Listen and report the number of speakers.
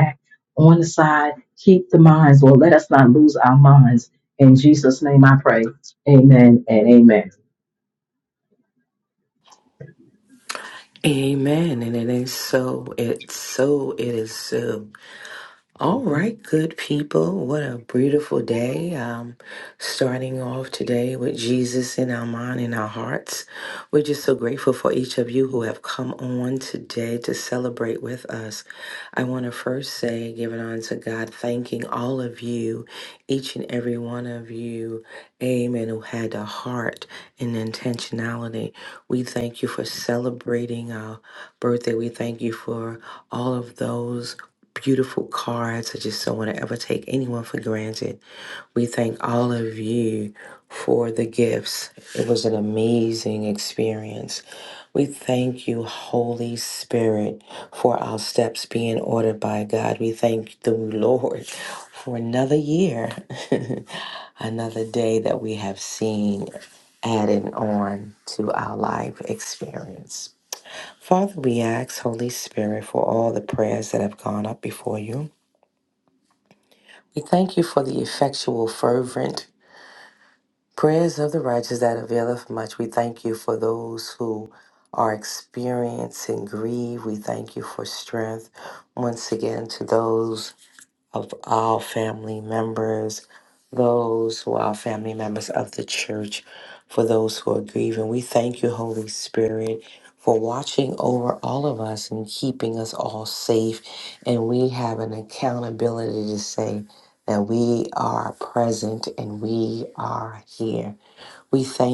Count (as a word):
two